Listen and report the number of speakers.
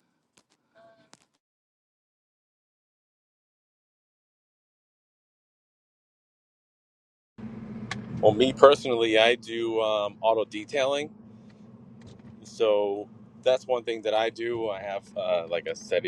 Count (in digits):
1